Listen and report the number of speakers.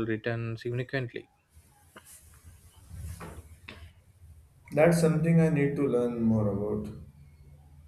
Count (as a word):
two